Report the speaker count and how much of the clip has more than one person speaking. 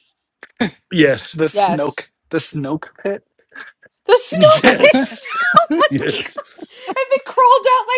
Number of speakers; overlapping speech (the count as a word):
three, about 15%